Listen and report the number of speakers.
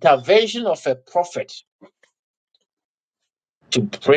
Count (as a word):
one